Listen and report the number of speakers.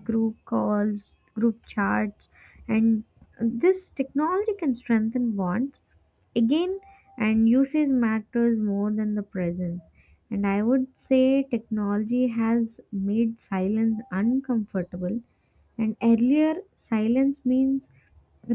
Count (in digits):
1